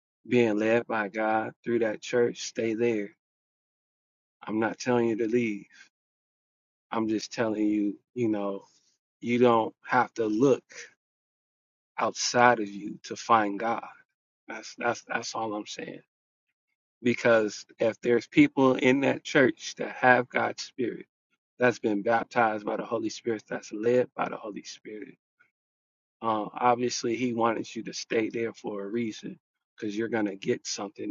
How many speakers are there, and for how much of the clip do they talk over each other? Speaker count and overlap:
1, no overlap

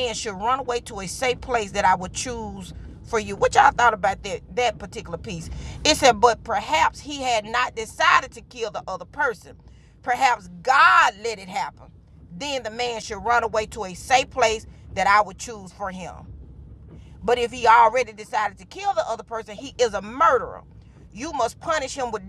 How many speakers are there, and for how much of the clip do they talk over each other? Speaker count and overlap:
1, no overlap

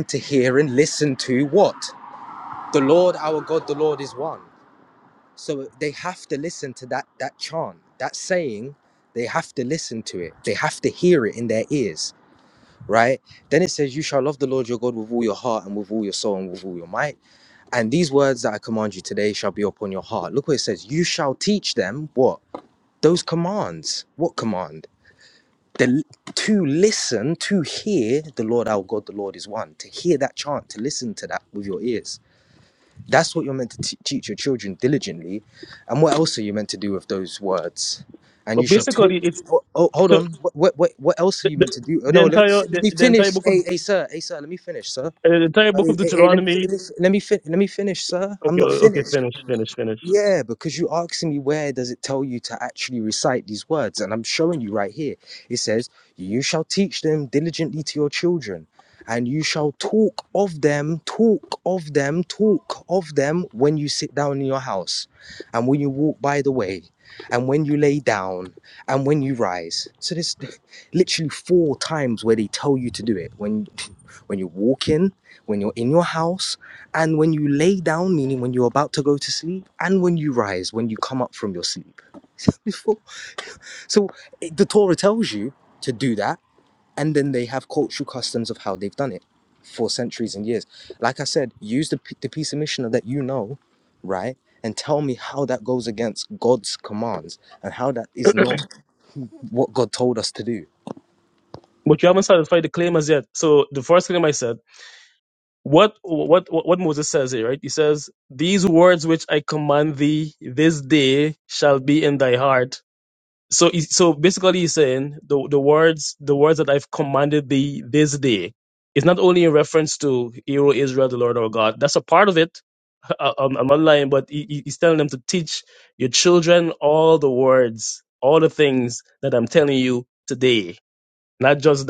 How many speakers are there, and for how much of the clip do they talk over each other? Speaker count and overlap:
2, about 3%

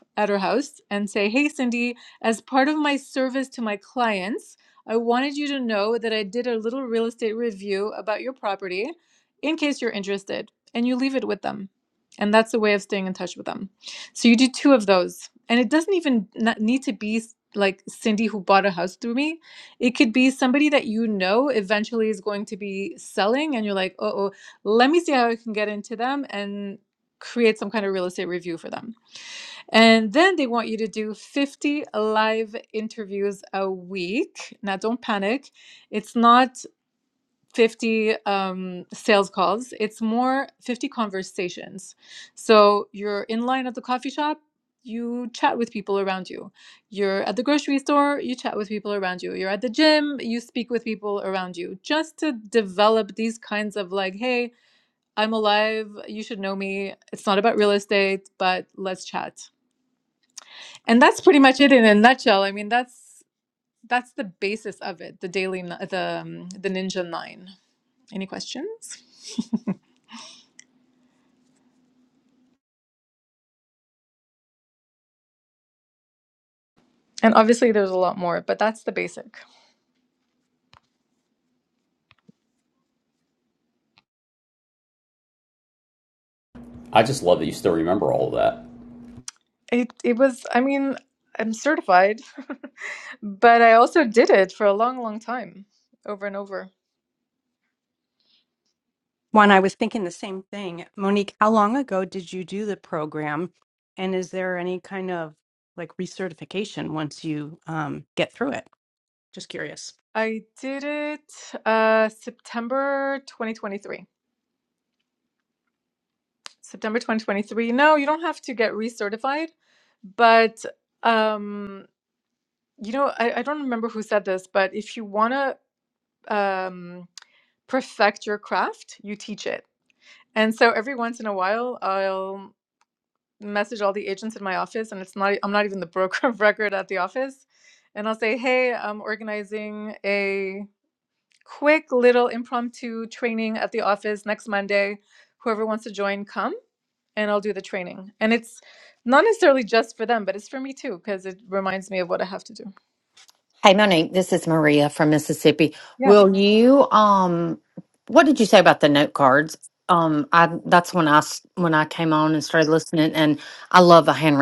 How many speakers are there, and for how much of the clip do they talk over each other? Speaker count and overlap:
4, under 1%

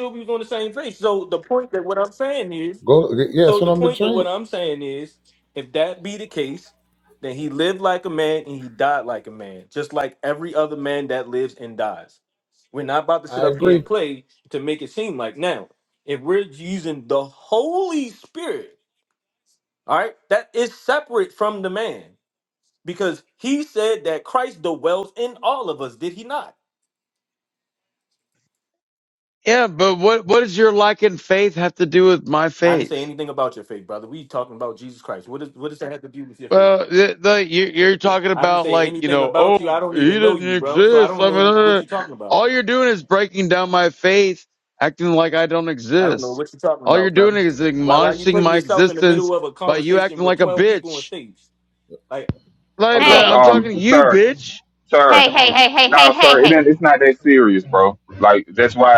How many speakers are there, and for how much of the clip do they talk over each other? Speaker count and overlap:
5, about 19%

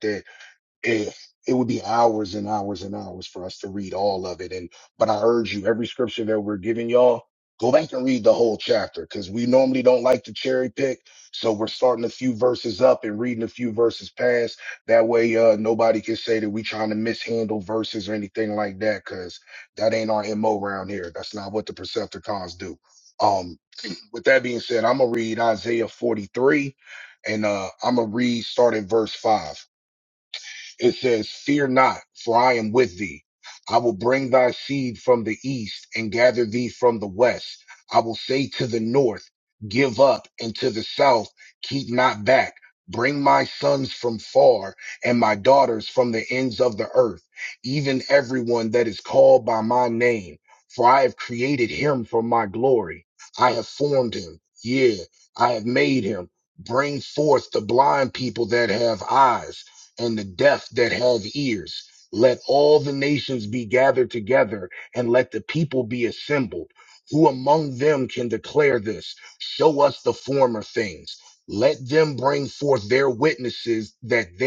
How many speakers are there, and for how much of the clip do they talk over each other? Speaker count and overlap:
1, no overlap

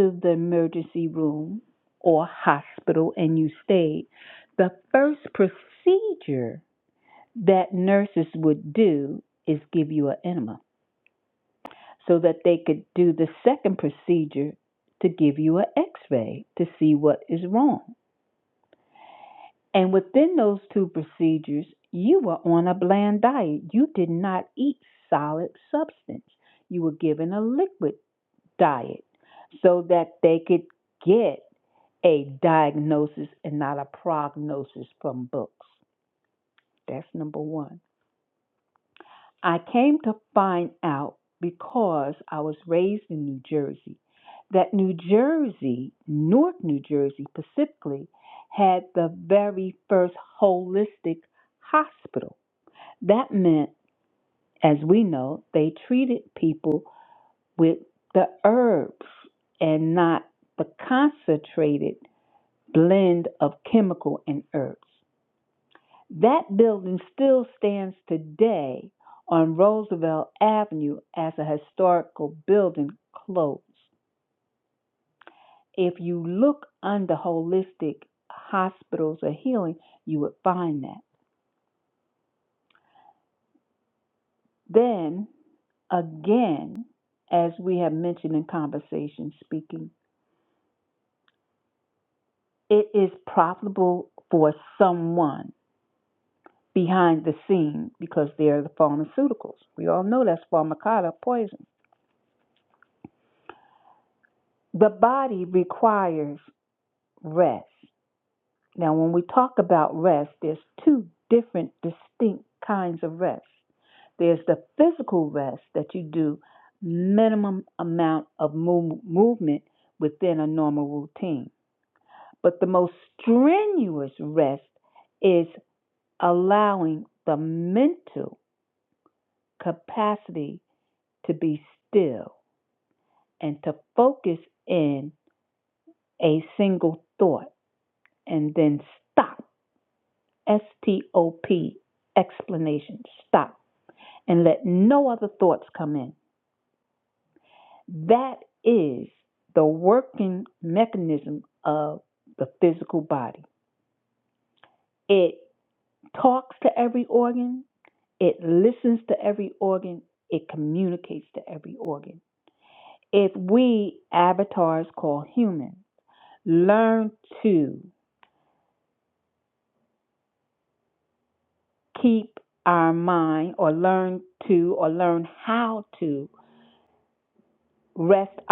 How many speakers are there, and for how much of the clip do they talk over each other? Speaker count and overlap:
1, no overlap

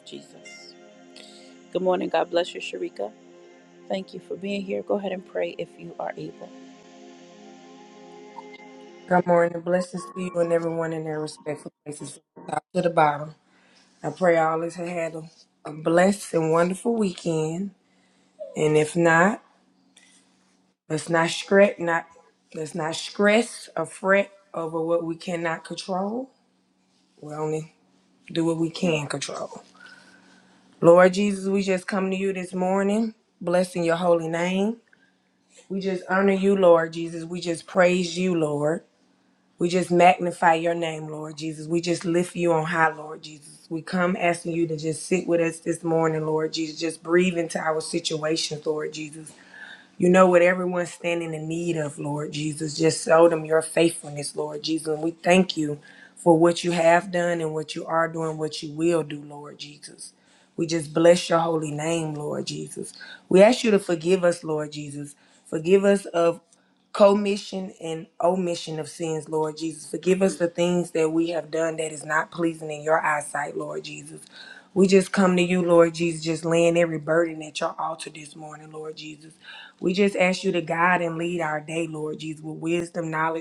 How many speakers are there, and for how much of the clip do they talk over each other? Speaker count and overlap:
2, no overlap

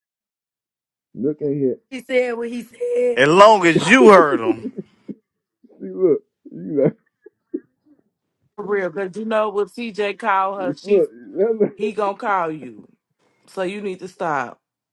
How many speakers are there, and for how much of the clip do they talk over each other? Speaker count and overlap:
4, about 3%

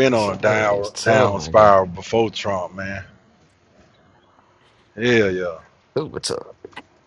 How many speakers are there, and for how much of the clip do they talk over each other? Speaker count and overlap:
2, about 23%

